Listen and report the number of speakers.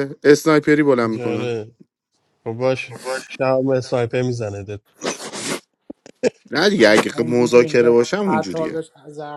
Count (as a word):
three